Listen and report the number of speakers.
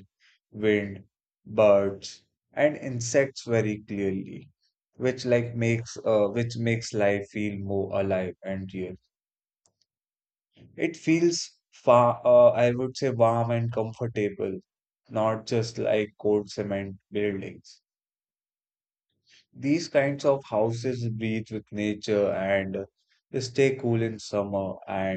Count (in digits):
1